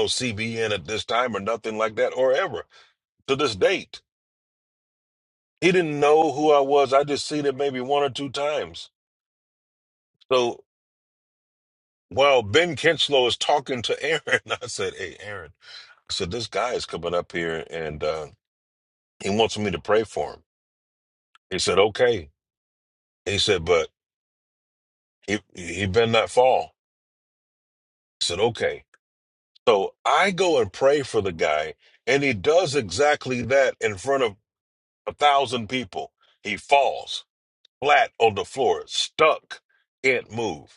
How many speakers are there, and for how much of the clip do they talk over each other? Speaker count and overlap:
one, no overlap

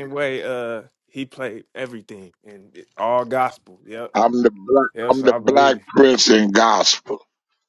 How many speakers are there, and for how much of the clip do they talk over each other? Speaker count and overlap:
two, about 11%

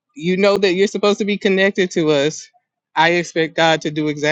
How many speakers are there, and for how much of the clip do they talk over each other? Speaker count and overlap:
one, no overlap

